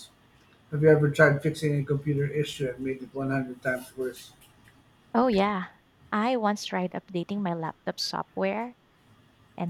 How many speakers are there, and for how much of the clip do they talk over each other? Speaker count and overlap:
2, no overlap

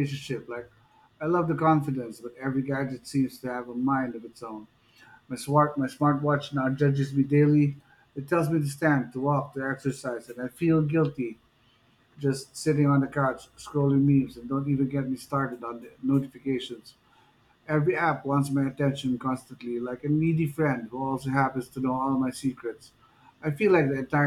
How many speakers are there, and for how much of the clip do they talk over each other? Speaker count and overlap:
1, no overlap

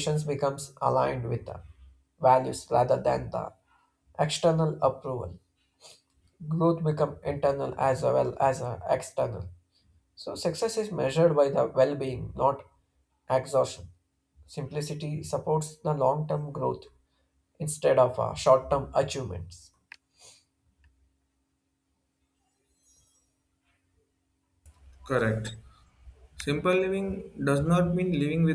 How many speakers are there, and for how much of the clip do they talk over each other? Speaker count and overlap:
2, no overlap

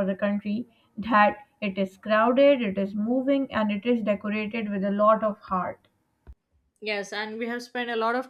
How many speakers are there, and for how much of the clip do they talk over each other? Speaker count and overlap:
2, no overlap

